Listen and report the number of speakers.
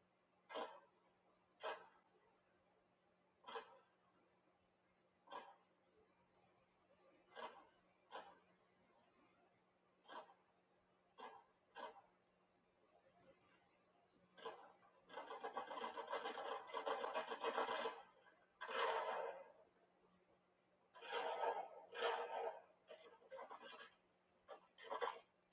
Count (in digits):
0